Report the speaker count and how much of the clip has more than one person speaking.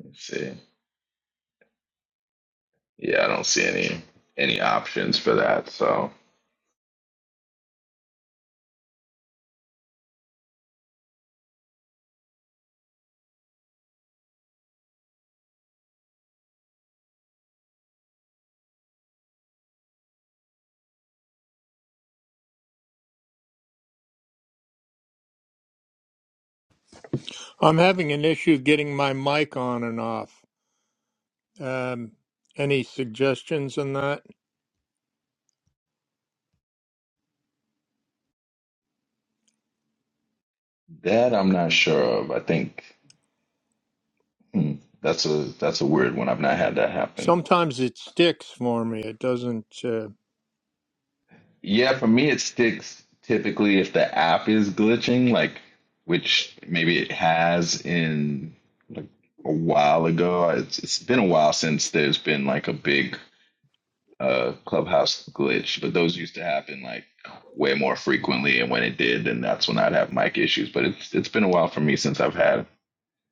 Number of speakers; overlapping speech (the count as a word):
two, under 1%